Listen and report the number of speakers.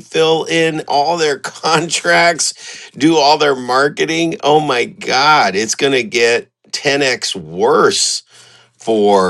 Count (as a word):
one